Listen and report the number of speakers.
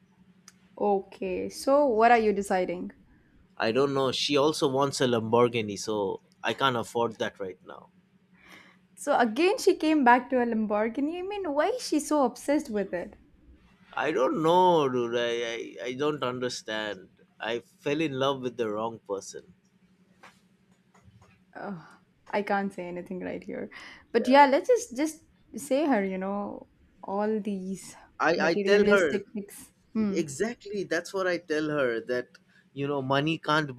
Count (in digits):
2